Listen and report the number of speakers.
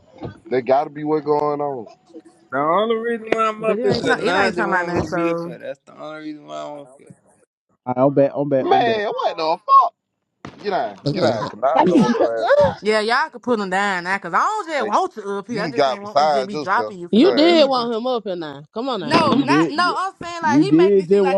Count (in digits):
5